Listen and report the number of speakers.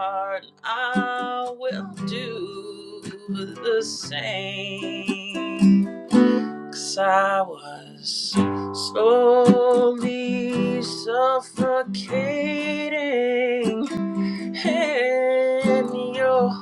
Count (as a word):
one